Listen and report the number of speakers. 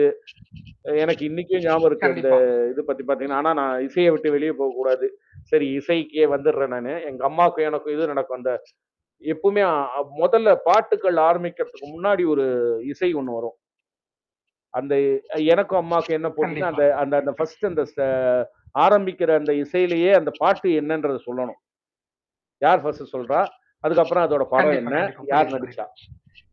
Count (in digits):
2